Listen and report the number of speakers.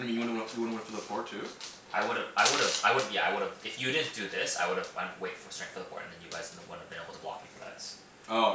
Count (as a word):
two